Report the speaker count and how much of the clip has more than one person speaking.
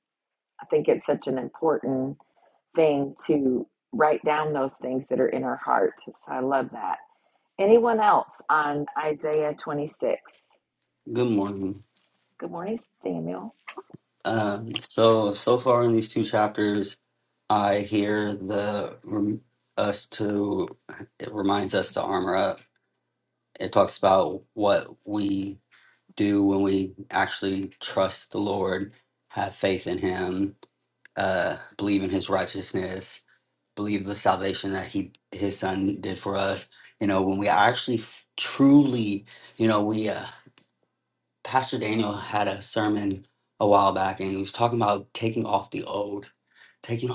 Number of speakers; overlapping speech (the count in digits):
2, no overlap